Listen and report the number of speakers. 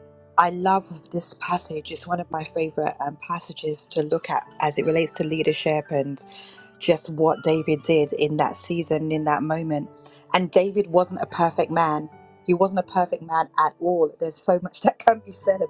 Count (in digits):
1